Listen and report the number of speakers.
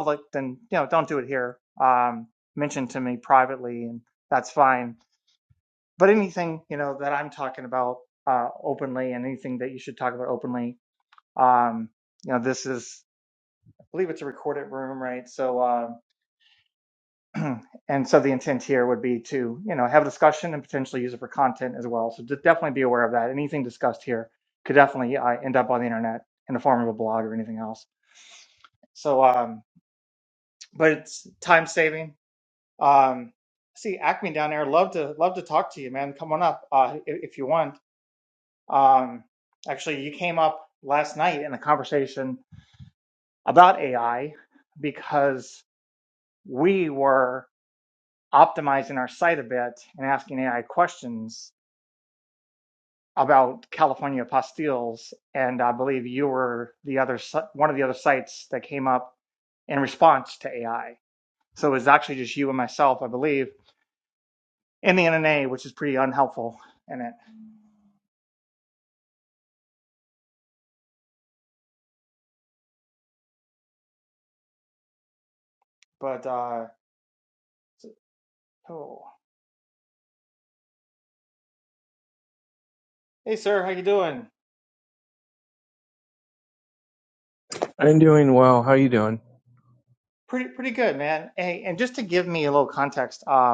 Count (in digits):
2